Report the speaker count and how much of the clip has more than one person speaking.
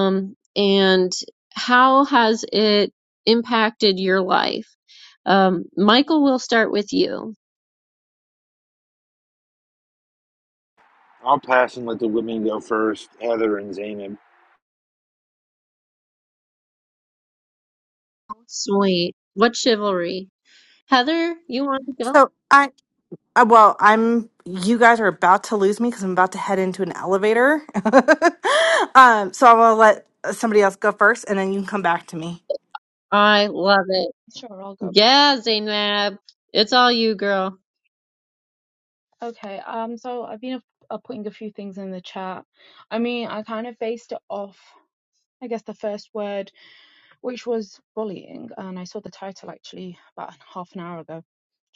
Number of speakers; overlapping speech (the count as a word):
four, under 1%